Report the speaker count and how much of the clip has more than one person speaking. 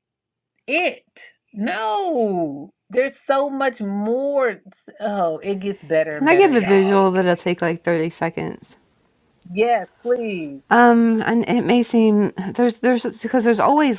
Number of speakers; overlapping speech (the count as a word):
two, about 7%